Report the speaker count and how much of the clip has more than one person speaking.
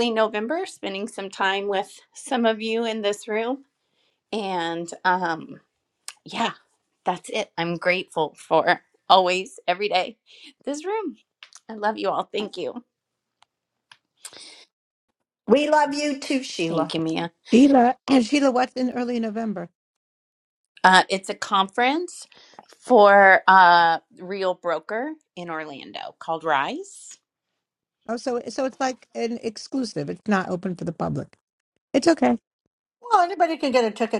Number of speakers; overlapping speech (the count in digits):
4, about 1%